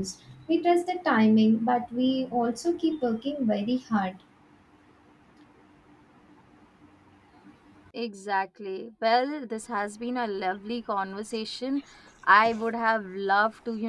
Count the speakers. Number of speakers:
2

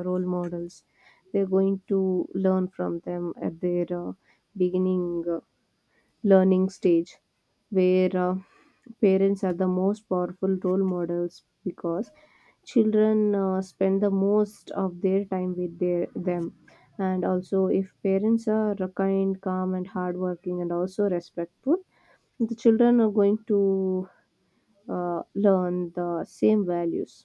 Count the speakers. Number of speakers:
1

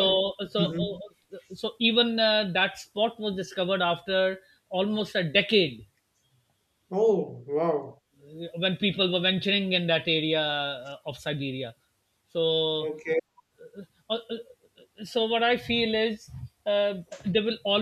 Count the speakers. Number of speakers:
2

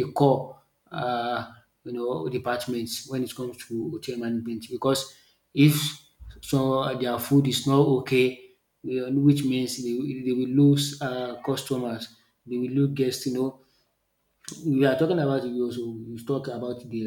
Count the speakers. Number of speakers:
1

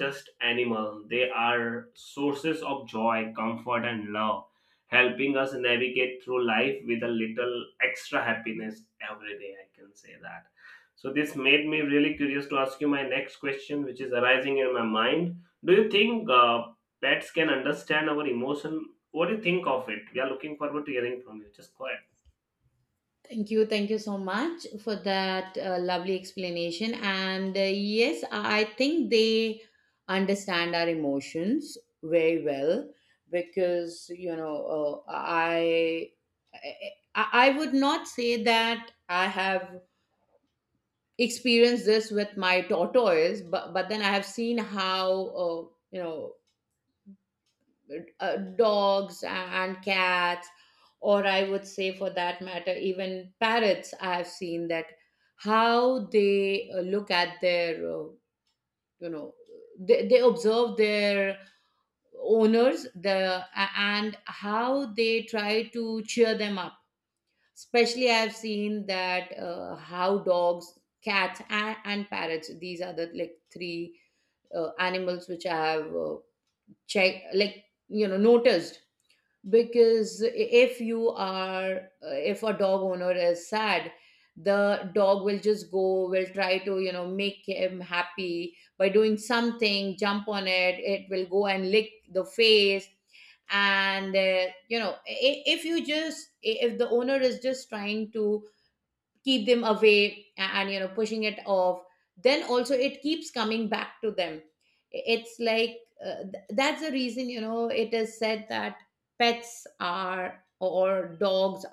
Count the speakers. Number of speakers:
2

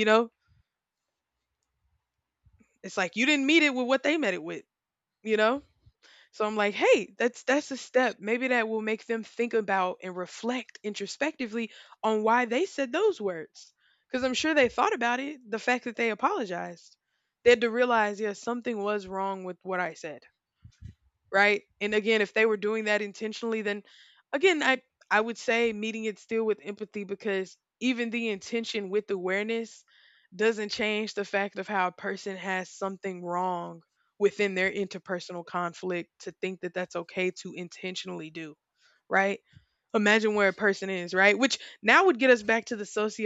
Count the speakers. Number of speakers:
1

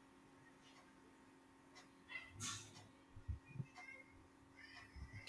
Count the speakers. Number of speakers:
0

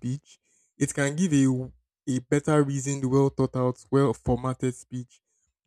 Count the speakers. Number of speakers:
1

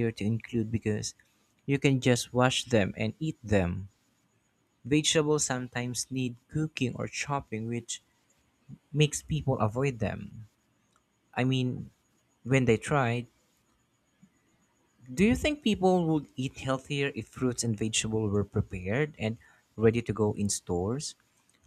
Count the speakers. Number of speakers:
1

